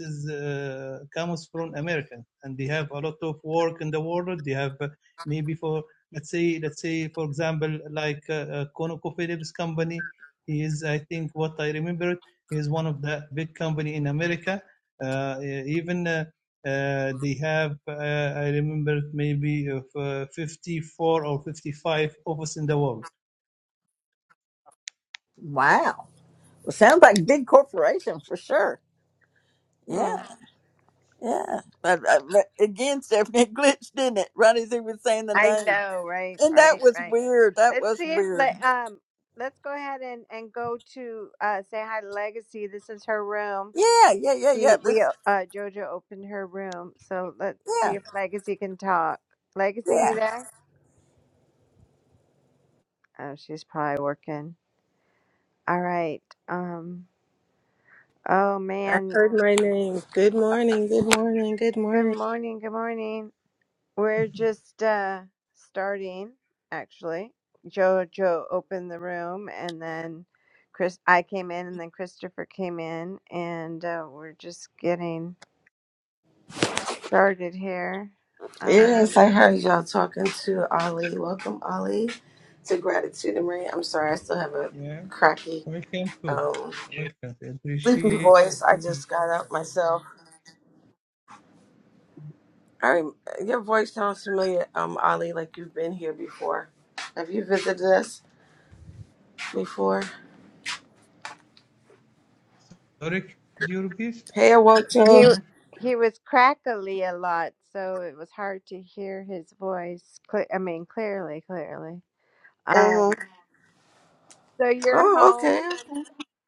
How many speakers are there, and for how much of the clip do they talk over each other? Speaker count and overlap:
4, about 5%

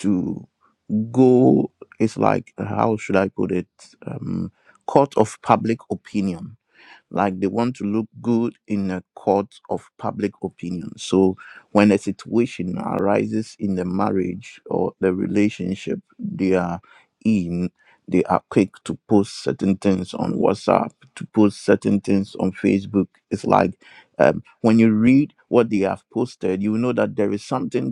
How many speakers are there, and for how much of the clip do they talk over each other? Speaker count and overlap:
1, no overlap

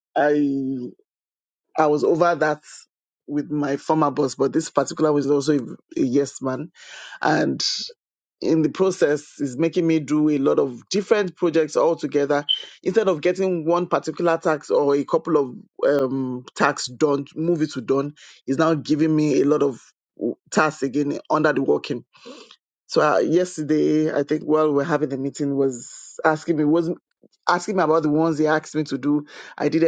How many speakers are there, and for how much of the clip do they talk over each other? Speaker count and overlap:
1, no overlap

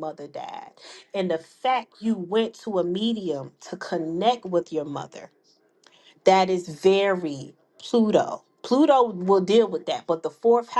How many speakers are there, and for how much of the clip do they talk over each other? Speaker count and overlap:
1, no overlap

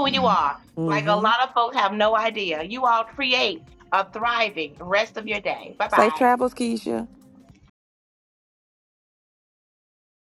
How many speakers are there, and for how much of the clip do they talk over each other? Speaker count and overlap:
2, about 8%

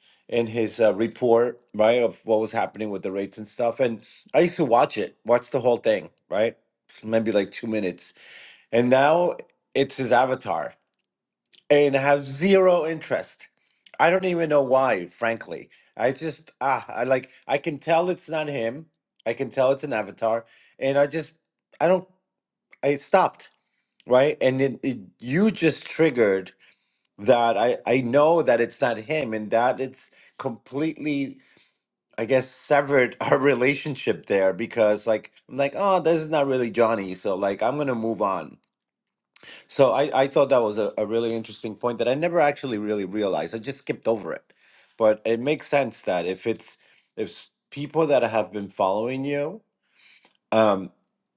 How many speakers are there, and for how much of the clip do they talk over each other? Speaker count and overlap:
1, no overlap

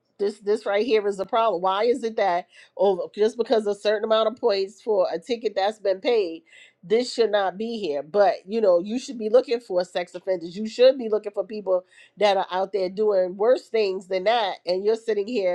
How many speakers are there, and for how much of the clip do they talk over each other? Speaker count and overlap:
1, no overlap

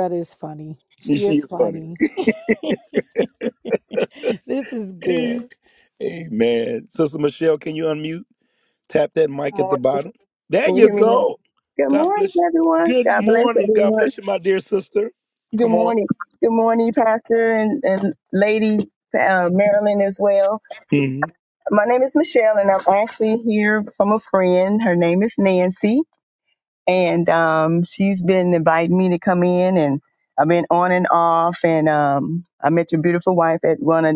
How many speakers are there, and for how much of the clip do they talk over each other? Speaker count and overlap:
3, about 11%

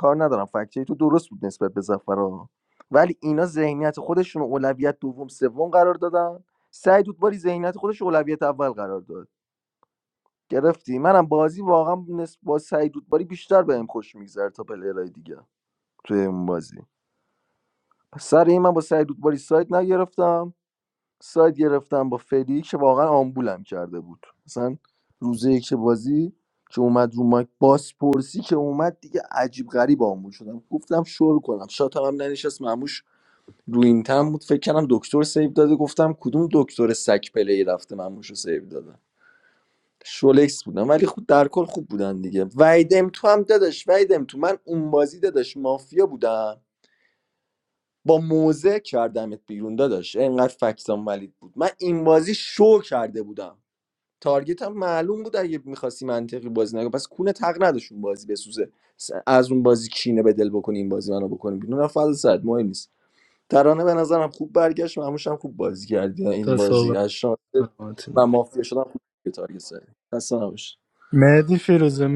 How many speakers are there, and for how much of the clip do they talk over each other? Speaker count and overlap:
2, about 1%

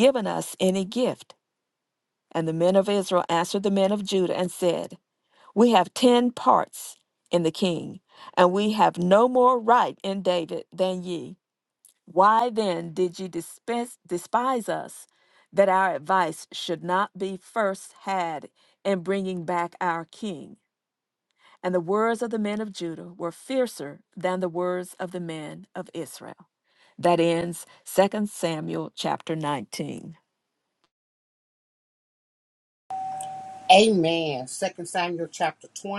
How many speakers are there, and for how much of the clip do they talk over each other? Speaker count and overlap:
2, no overlap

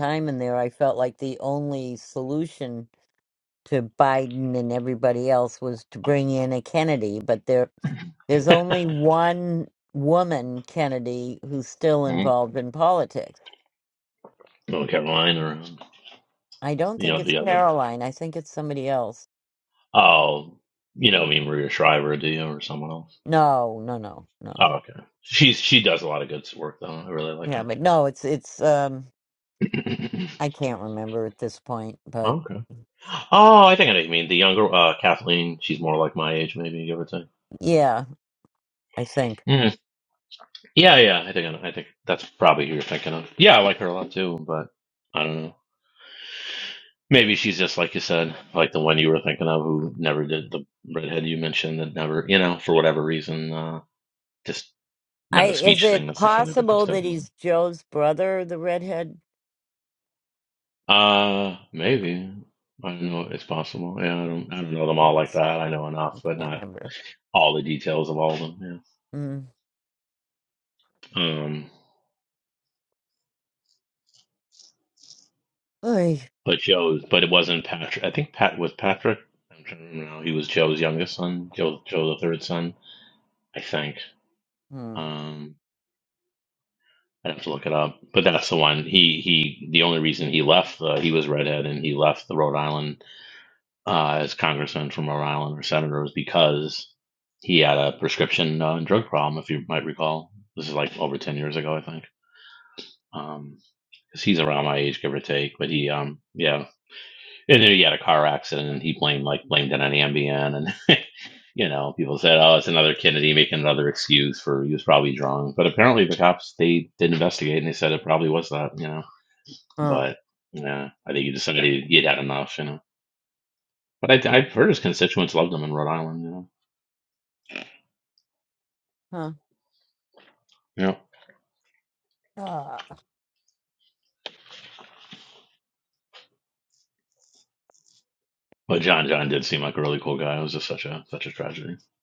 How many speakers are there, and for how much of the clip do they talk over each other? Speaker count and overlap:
2, about 3%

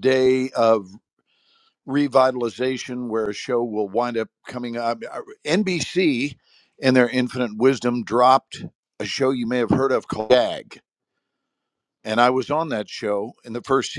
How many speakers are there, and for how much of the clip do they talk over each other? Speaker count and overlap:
1, no overlap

